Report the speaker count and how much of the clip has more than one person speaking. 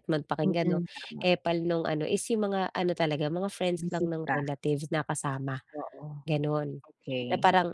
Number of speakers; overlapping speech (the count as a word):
two, about 14%